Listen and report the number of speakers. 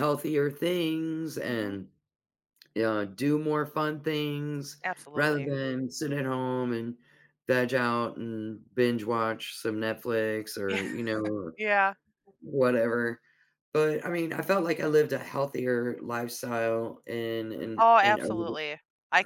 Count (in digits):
2